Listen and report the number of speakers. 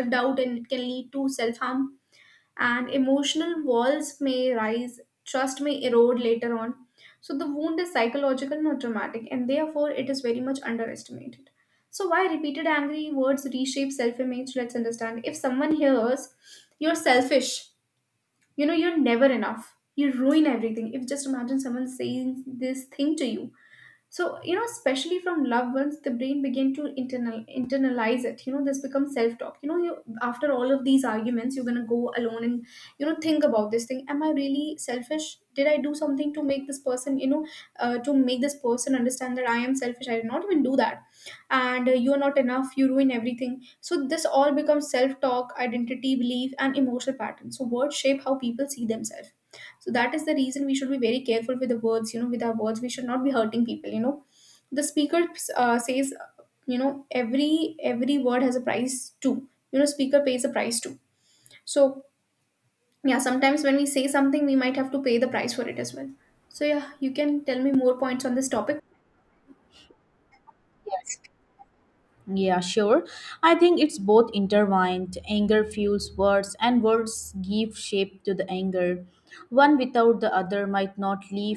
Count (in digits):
2